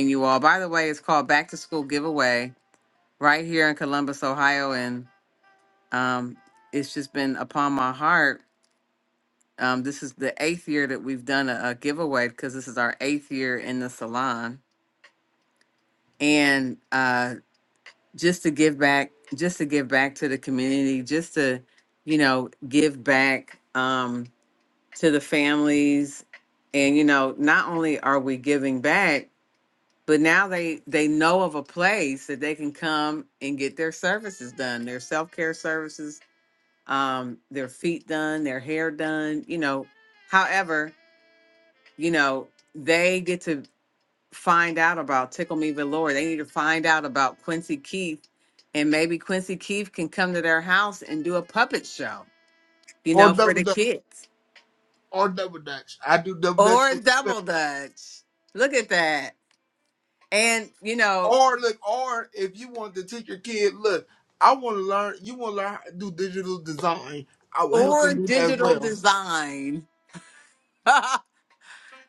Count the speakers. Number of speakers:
two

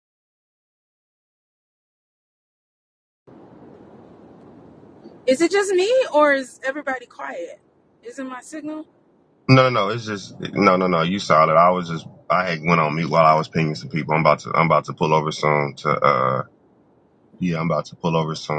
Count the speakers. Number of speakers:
two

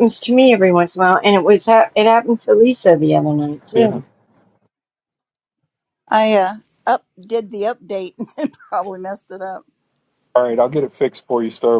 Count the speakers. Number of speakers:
three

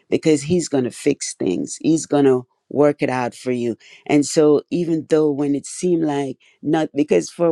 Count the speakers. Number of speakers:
one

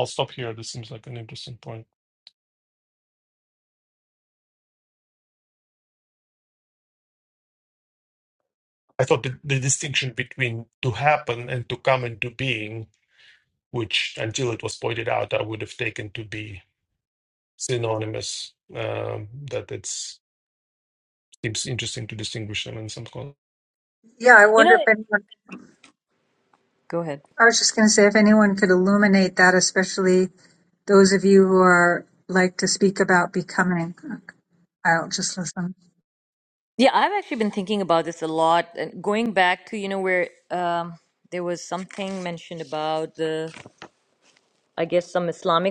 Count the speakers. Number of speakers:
three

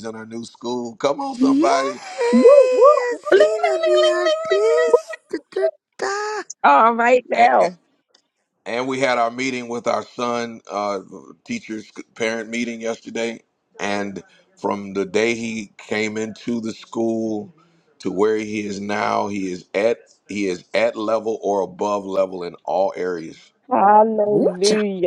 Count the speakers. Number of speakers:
four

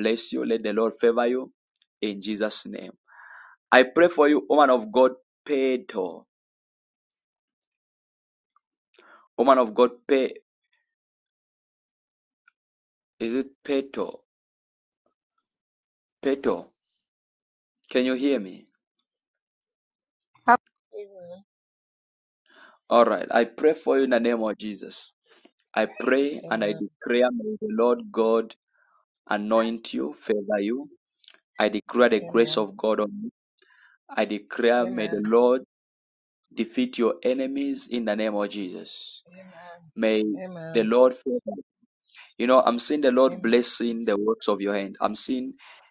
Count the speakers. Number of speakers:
two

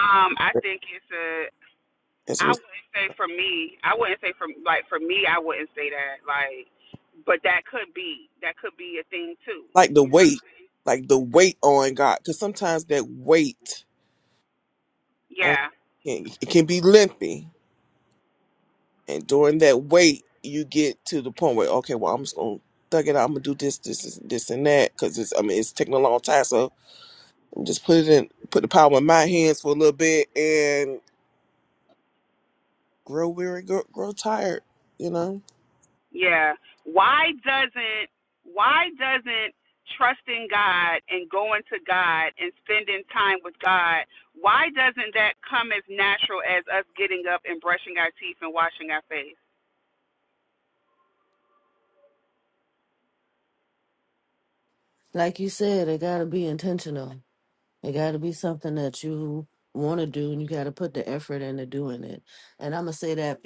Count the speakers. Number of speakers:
three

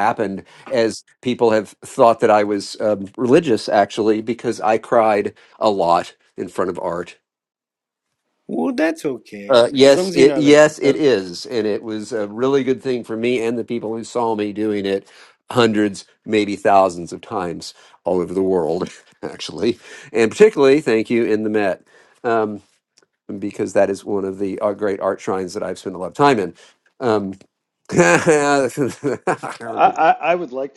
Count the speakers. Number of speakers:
three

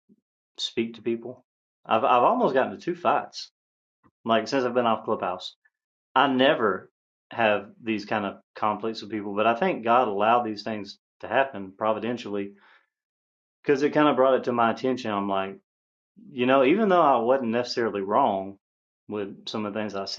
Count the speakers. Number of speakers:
one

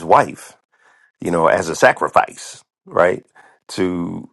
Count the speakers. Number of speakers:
one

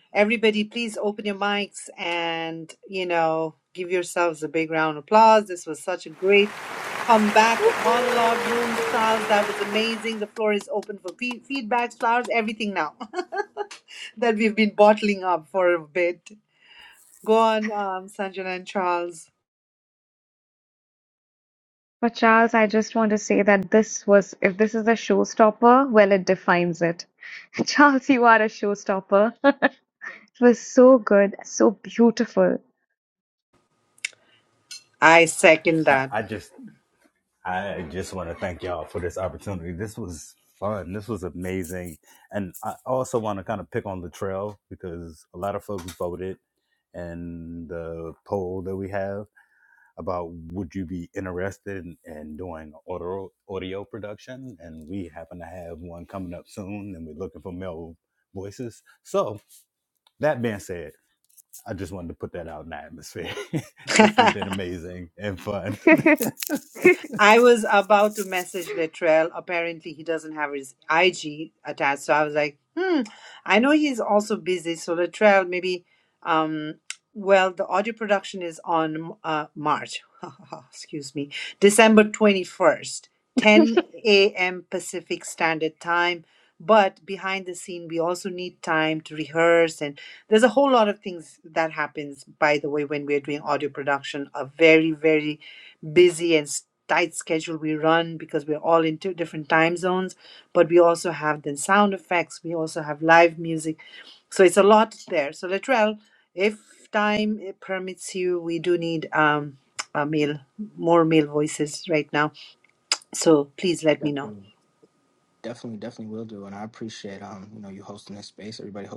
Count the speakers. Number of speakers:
four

